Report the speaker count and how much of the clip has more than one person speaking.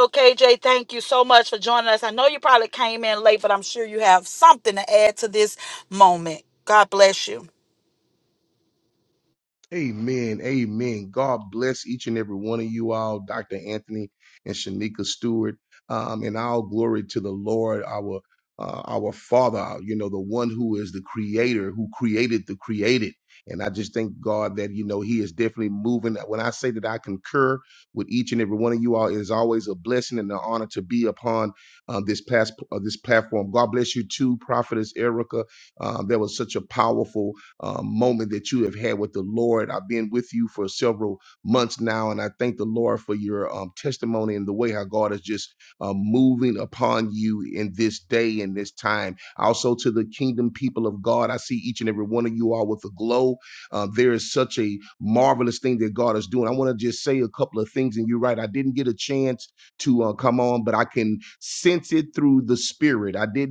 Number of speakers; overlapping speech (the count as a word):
two, no overlap